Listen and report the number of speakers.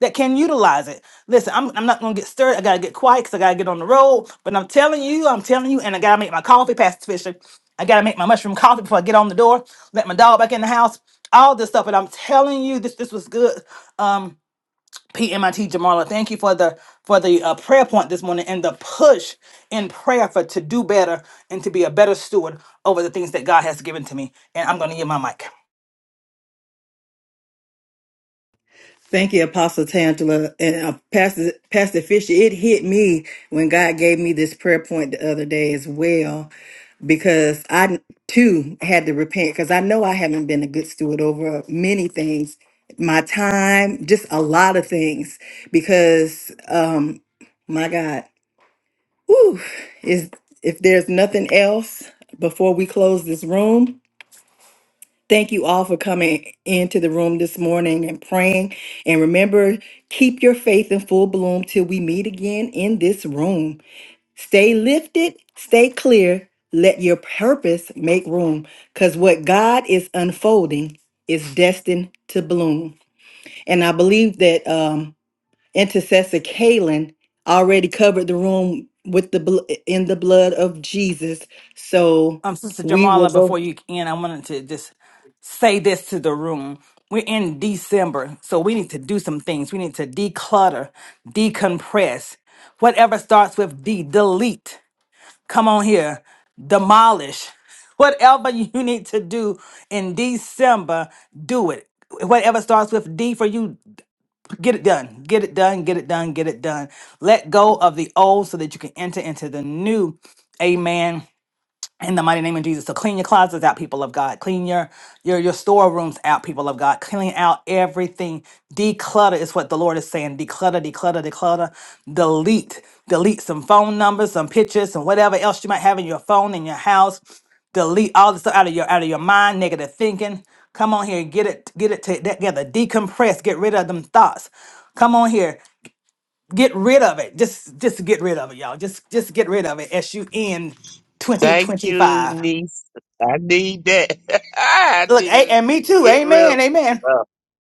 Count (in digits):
3